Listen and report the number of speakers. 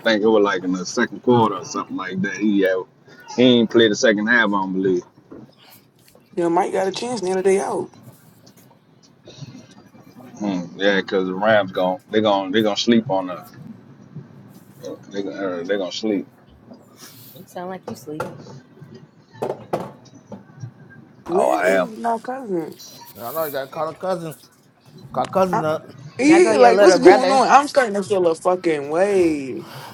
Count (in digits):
4